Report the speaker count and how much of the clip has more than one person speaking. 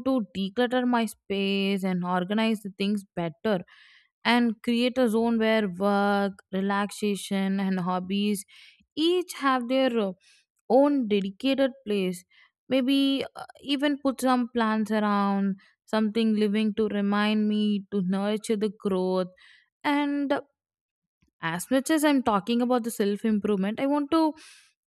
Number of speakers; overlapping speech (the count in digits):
1, no overlap